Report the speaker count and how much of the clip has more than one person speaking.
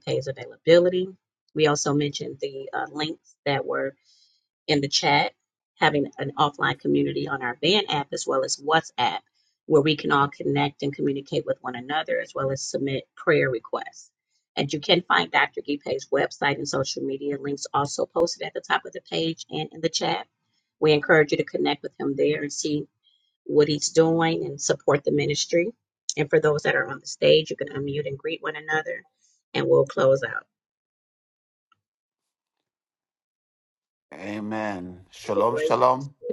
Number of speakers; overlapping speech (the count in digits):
2, about 1%